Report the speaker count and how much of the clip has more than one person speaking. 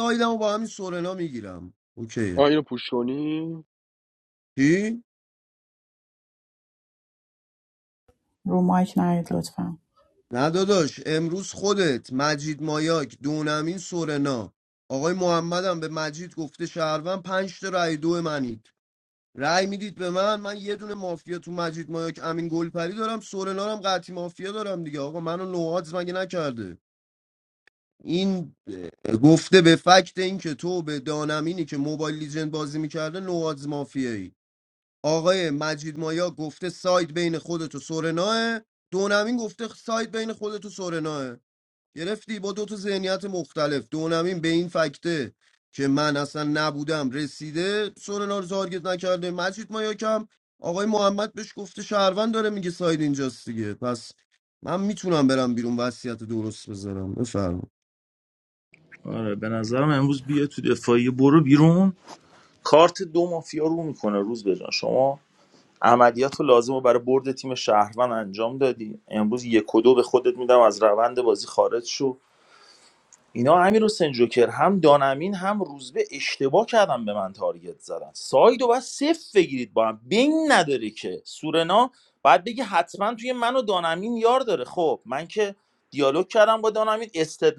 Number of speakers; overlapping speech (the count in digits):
4, under 1%